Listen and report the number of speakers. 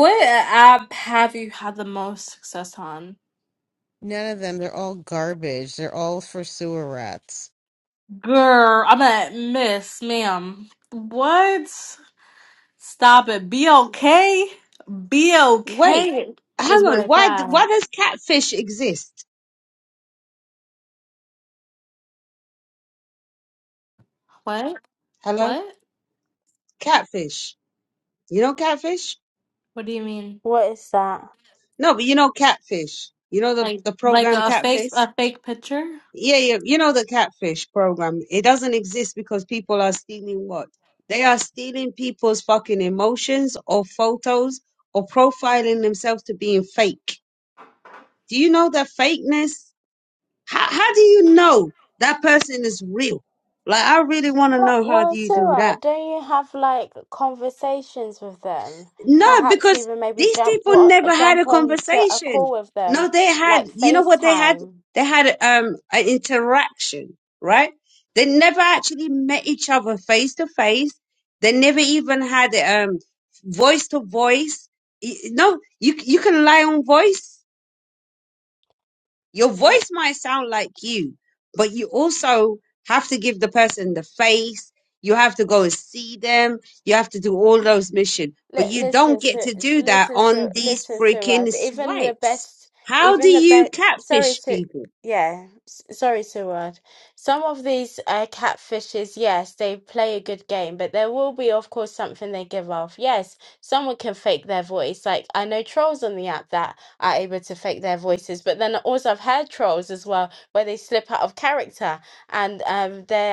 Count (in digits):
4